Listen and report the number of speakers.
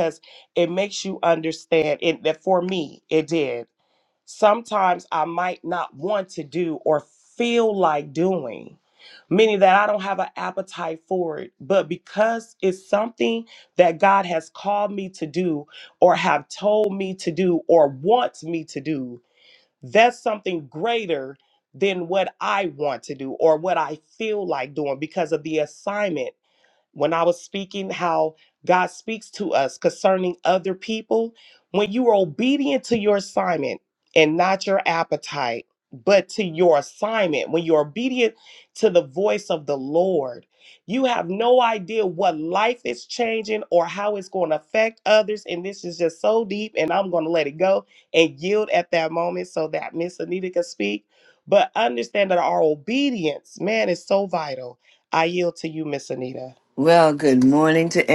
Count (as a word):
two